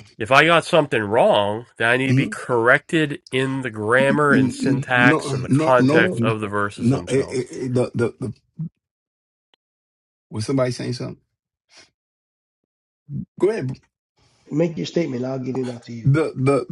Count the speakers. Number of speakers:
three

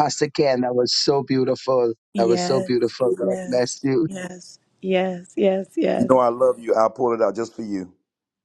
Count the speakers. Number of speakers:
three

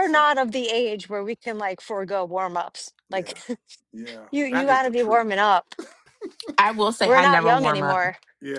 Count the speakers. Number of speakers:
three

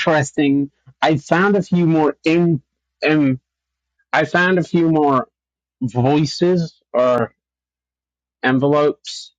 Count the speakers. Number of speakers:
one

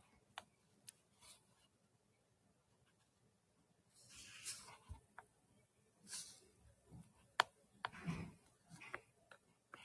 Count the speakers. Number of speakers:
zero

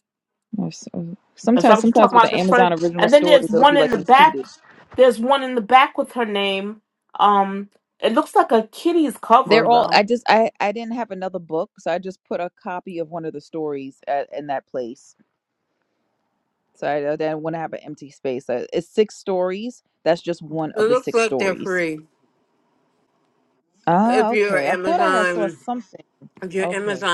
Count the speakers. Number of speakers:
three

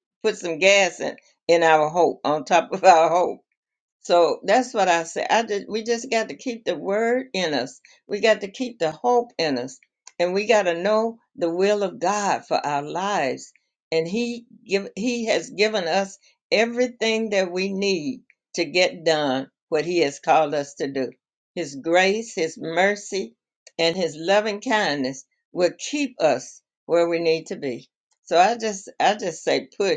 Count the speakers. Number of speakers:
one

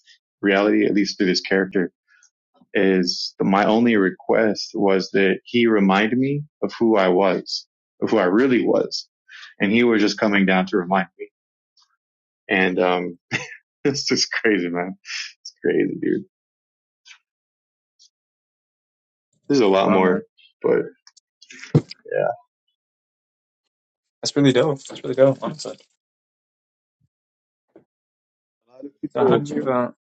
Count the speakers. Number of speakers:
two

